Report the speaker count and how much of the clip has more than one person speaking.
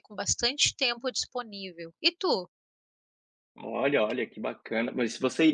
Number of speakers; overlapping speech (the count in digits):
2, no overlap